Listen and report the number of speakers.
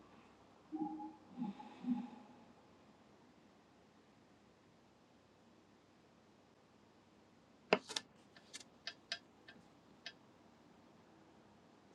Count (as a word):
zero